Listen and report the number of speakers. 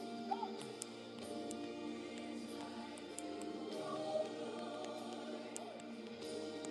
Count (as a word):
zero